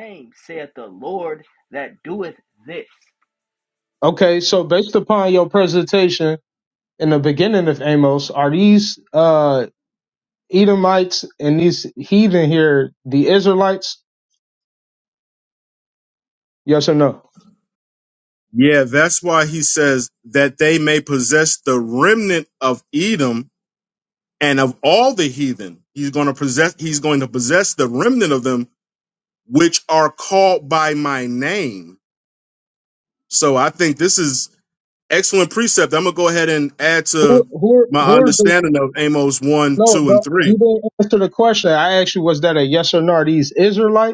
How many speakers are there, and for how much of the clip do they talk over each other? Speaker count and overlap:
three, about 4%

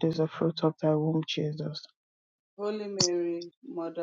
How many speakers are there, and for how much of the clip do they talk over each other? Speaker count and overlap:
two, no overlap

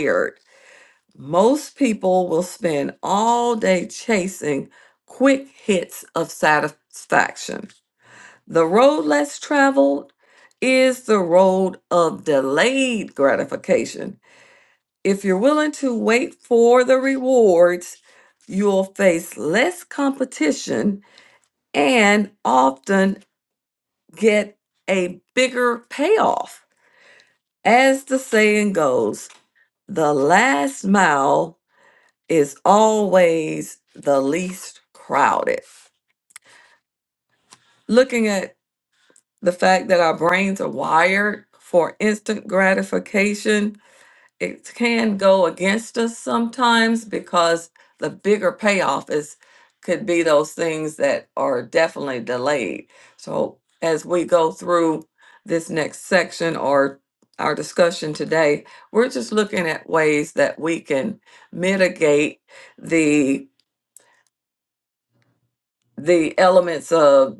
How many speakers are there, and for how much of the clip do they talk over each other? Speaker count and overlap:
one, no overlap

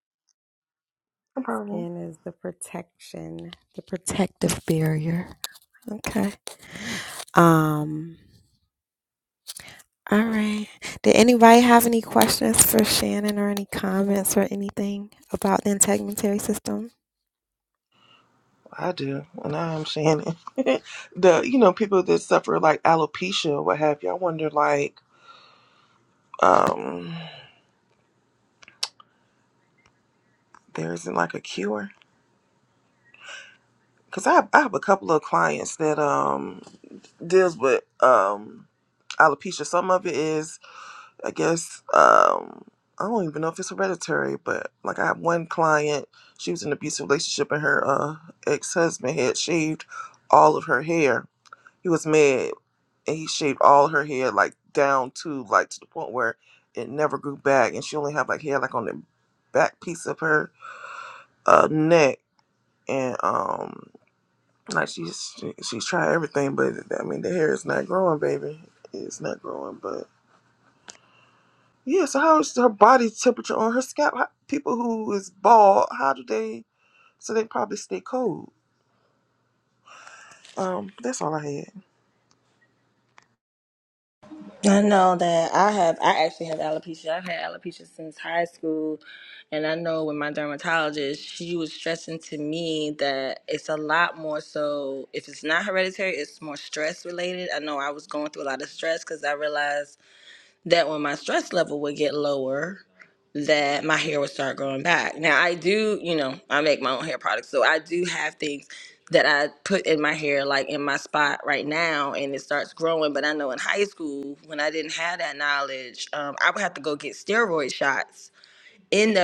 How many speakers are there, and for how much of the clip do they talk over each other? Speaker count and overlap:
three, under 1%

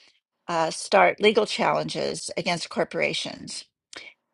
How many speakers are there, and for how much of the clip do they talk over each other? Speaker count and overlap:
one, no overlap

